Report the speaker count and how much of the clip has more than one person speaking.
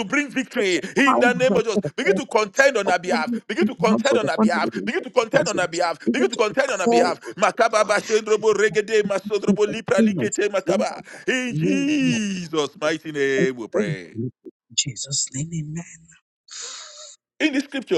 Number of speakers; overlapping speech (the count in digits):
2, about 51%